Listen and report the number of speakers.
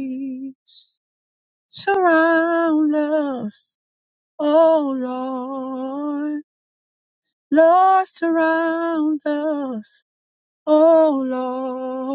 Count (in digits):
1